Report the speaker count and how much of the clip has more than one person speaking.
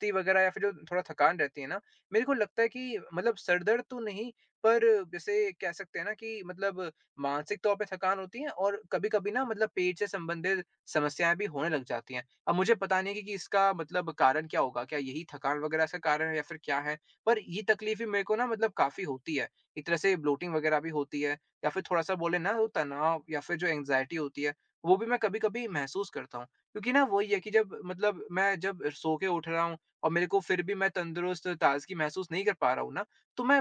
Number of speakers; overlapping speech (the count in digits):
1, no overlap